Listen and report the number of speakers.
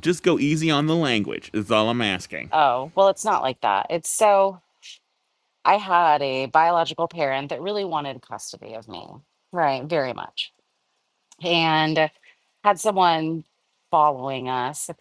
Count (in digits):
2